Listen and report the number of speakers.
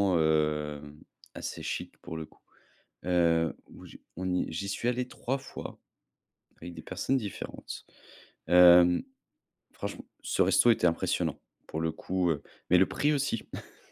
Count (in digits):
1